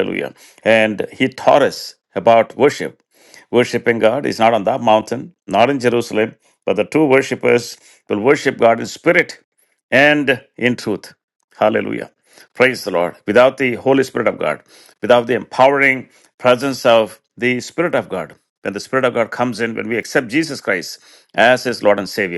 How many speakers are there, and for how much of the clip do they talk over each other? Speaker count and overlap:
1, no overlap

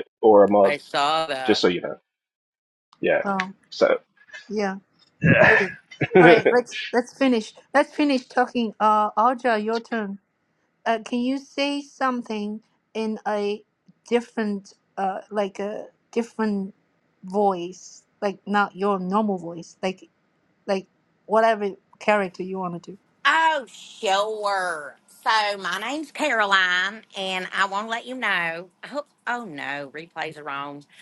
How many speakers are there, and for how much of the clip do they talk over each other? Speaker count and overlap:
3, about 1%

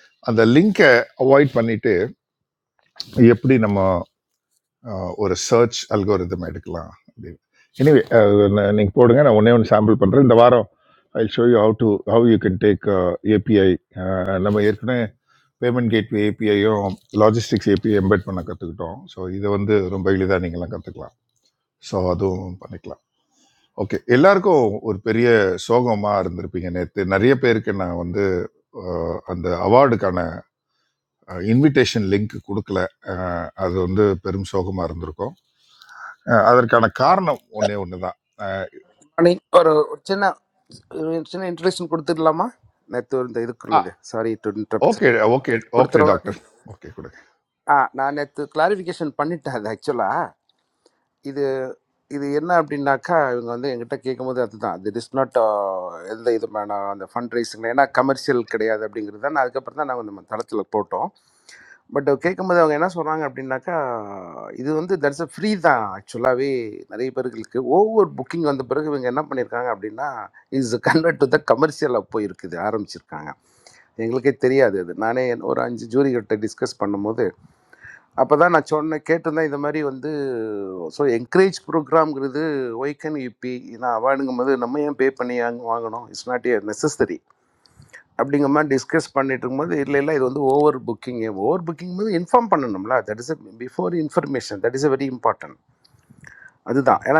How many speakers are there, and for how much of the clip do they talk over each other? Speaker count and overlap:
2, about 1%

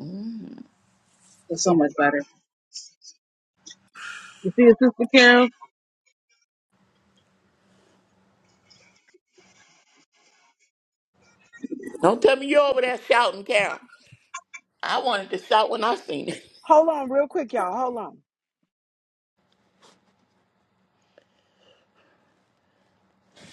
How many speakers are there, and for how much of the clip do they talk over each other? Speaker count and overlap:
3, no overlap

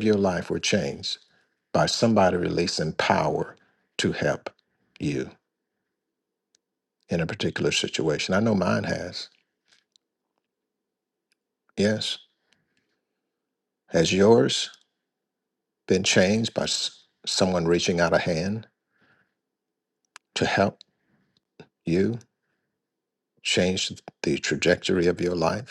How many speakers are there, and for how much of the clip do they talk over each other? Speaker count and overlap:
1, no overlap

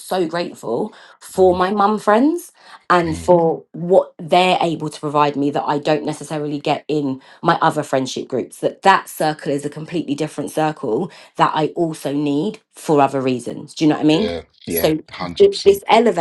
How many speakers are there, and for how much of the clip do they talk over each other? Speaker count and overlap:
2, about 8%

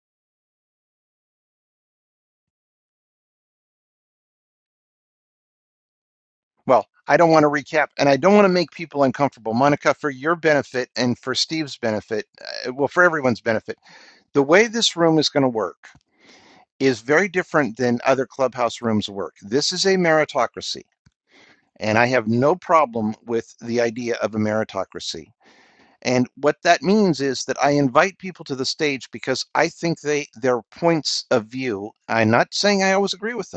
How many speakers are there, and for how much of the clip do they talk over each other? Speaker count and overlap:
1, no overlap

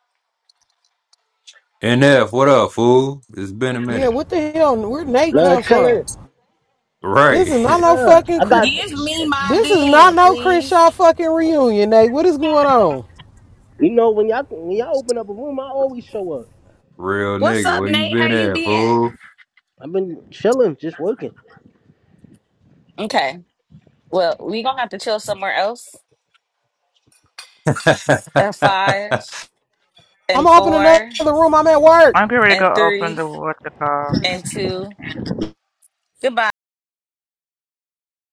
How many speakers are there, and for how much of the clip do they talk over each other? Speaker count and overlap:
5, about 16%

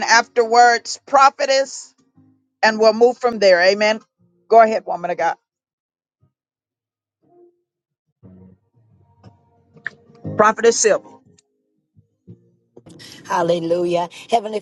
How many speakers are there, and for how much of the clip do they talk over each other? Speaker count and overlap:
2, no overlap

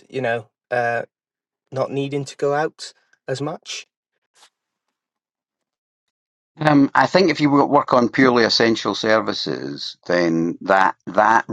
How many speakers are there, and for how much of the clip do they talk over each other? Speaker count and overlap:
2, no overlap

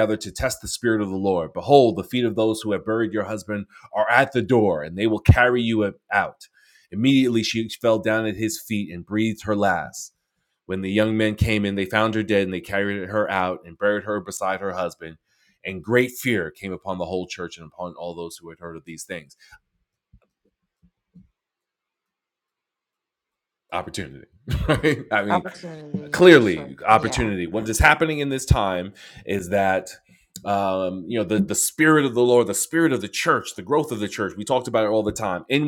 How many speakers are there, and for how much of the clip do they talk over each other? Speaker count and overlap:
2, about 4%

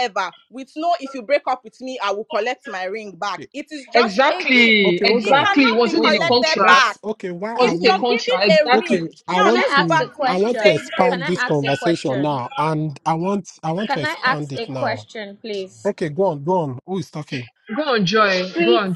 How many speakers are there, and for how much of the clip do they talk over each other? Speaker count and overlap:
4, about 49%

